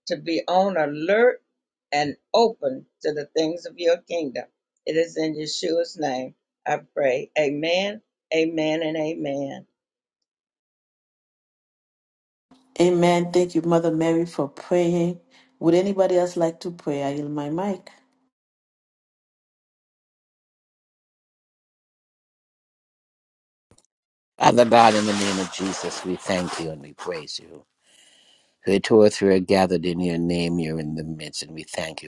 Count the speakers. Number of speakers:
three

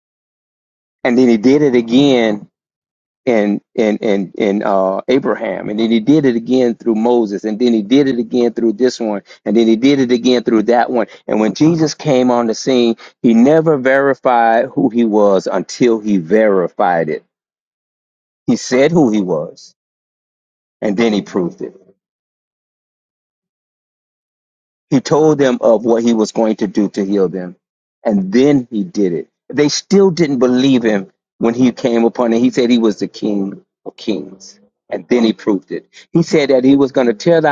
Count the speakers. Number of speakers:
one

